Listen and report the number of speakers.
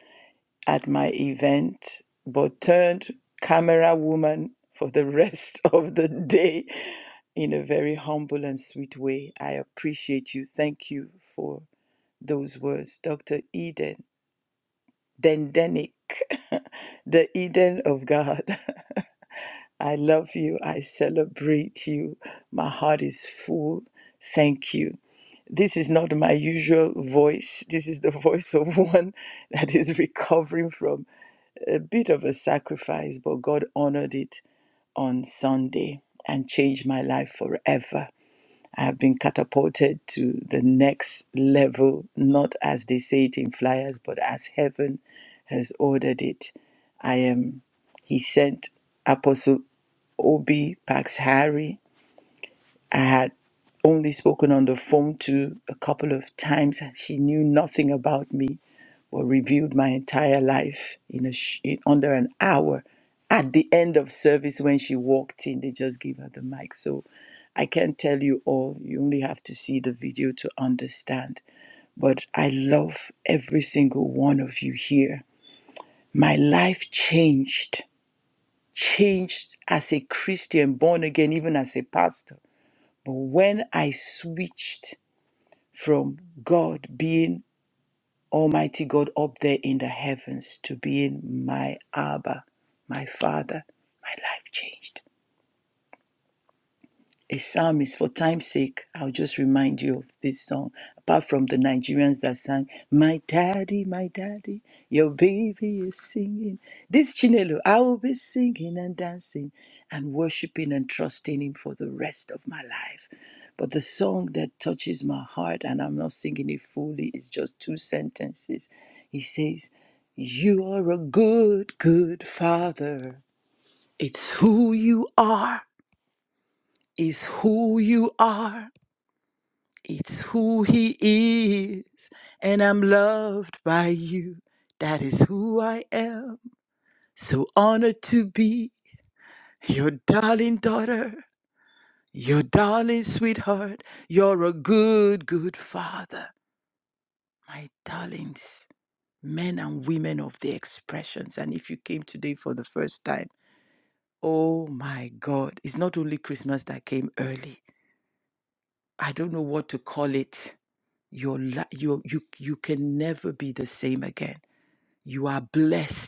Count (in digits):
1